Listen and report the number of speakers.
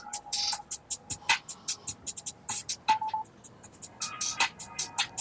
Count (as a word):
zero